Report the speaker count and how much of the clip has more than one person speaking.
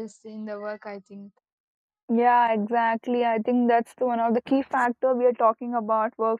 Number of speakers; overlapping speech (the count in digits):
2, no overlap